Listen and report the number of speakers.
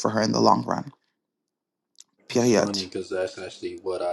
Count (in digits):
2